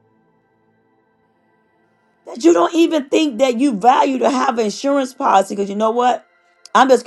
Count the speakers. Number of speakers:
one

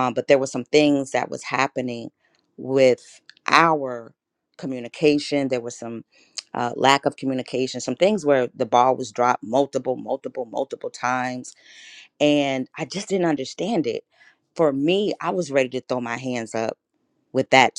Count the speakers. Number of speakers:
one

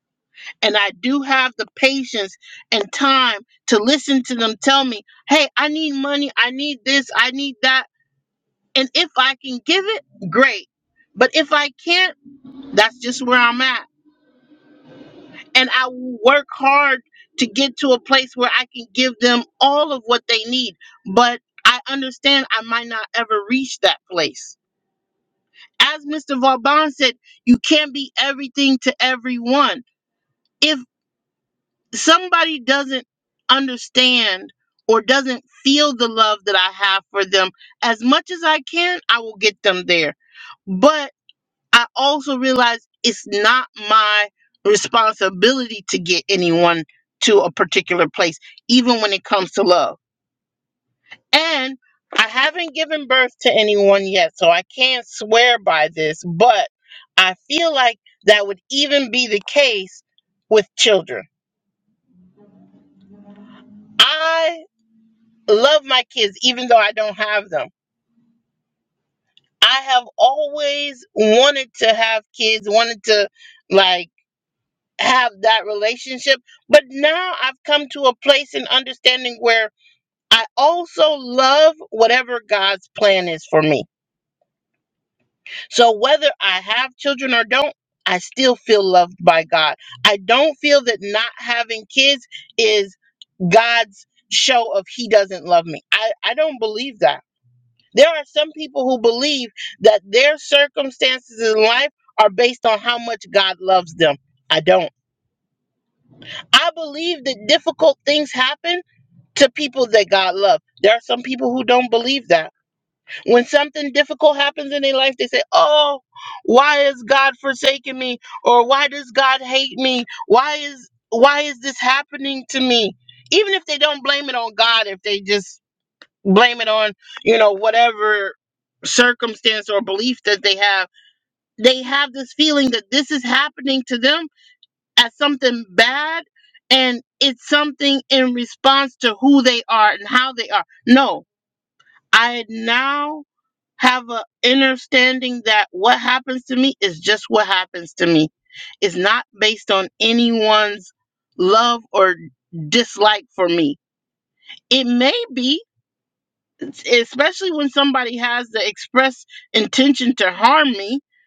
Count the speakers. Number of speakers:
one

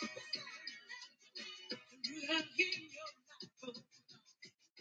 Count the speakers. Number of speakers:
zero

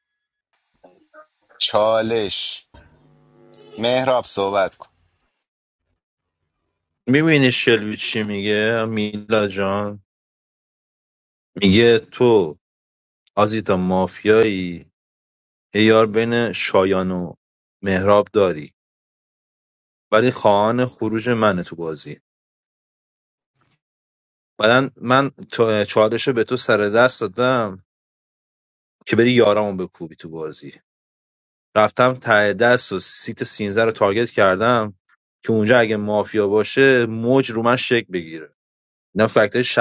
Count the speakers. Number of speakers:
two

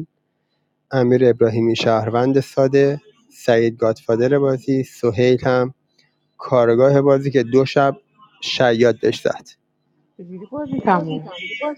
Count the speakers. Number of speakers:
two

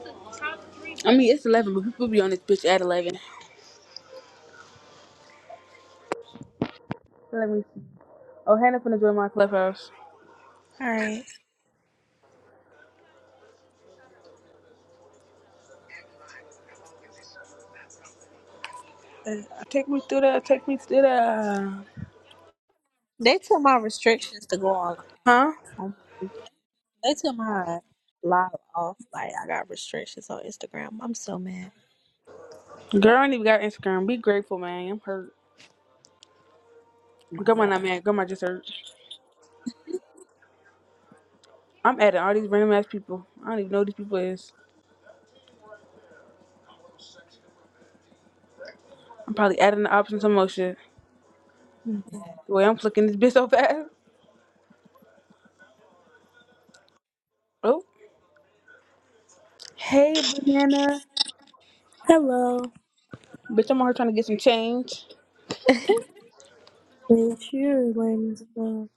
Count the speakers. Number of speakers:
three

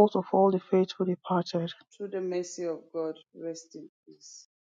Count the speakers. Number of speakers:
two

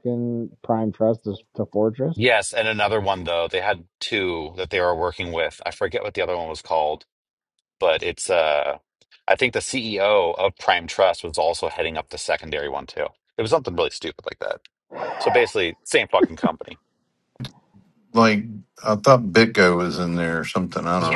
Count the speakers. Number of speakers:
three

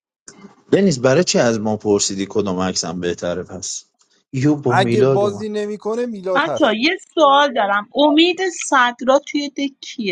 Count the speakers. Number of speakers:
three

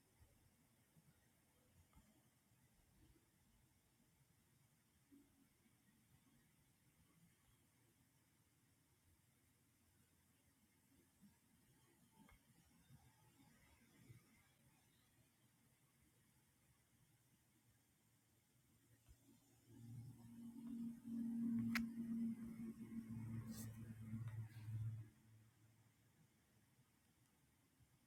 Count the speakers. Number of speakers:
zero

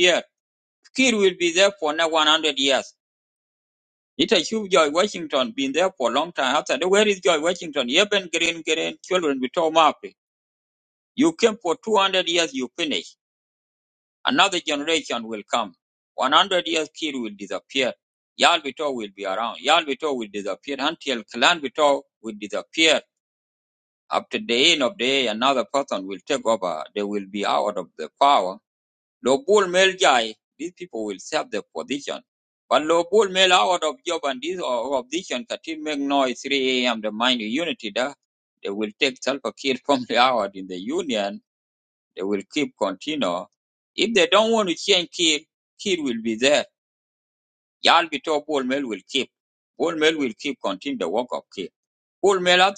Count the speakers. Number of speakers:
one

